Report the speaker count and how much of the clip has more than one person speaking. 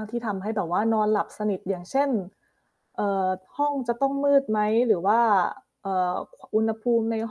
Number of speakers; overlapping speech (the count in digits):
1, no overlap